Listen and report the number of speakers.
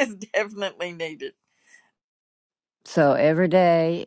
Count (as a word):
two